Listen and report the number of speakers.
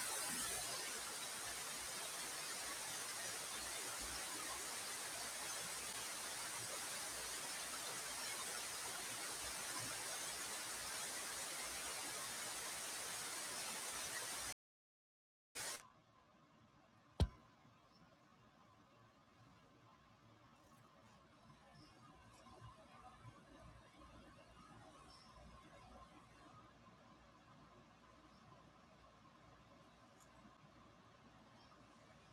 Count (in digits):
0